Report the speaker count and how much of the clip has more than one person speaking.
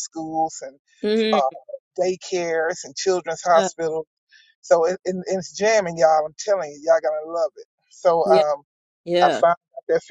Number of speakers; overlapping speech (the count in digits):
2, about 7%